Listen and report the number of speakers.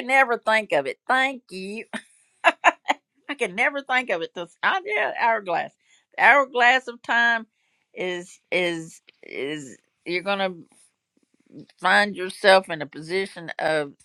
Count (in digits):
1